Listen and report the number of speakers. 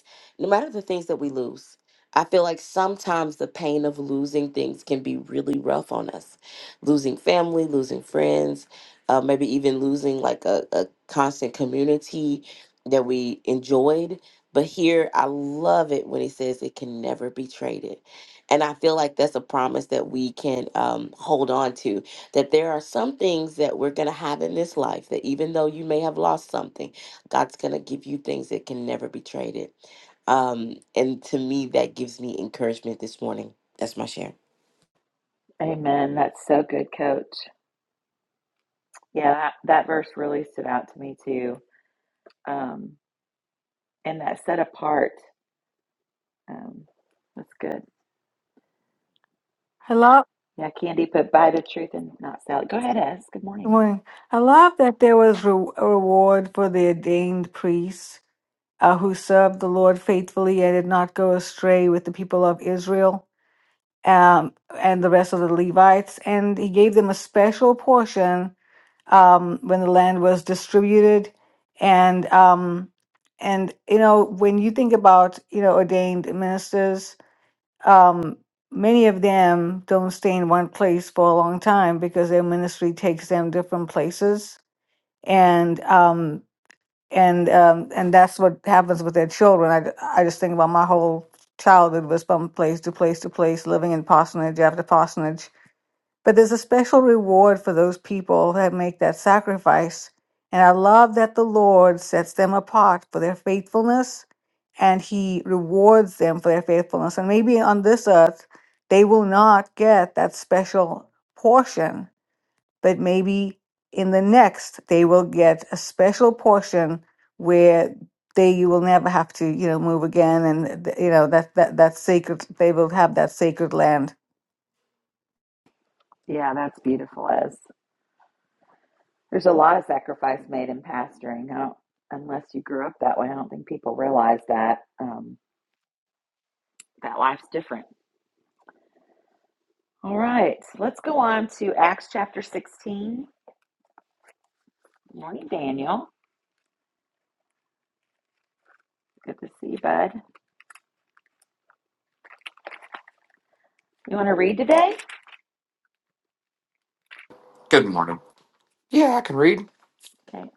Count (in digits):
4